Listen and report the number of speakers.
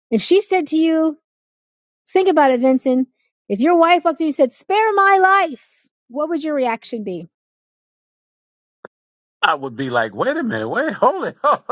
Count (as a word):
two